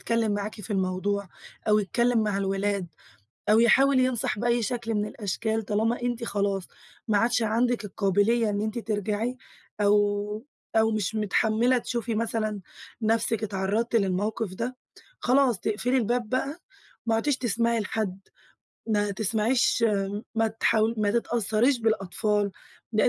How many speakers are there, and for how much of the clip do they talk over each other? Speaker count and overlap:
one, no overlap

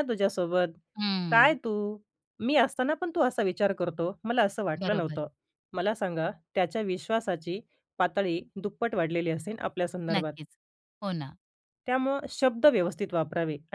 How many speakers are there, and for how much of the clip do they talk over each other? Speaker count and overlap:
two, about 6%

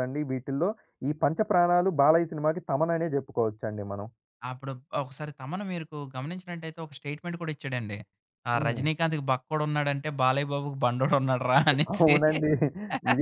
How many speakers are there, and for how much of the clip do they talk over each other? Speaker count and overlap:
two, about 4%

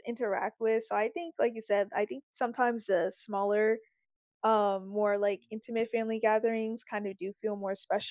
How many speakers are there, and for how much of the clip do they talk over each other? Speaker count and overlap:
one, no overlap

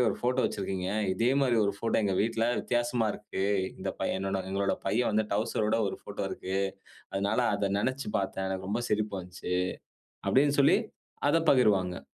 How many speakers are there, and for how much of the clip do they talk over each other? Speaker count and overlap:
one, no overlap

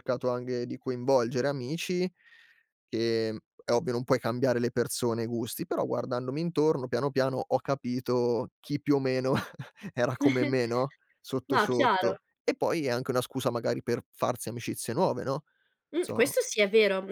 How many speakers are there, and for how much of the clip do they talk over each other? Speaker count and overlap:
two, about 5%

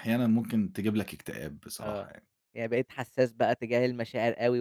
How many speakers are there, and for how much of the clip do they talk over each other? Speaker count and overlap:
two, about 6%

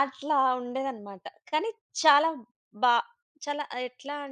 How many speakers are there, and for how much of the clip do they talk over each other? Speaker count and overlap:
one, no overlap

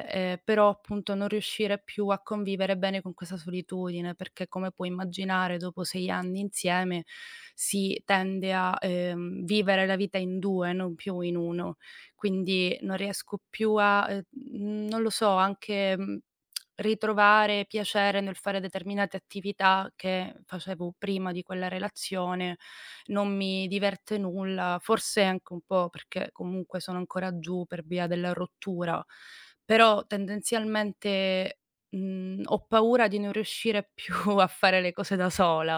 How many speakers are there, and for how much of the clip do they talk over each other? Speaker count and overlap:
one, no overlap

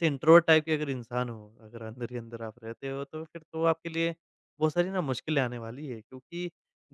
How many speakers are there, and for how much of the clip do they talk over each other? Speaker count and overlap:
one, no overlap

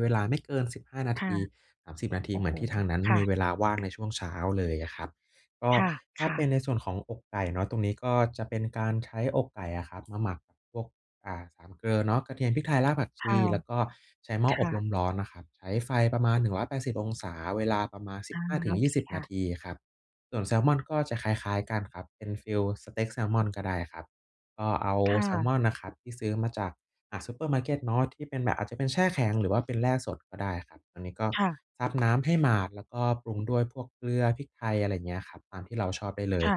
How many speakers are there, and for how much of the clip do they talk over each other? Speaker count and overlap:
two, about 8%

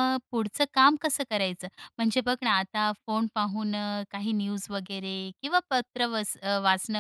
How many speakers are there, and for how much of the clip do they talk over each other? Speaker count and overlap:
one, no overlap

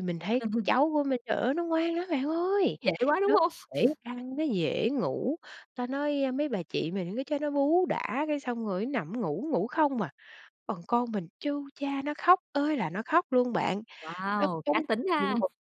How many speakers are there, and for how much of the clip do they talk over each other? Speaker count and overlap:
two, about 3%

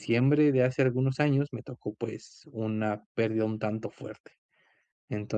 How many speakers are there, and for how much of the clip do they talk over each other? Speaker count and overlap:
one, no overlap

